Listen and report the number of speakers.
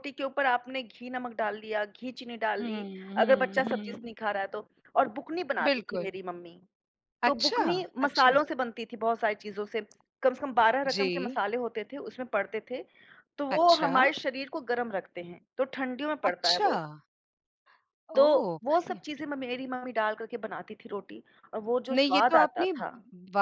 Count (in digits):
2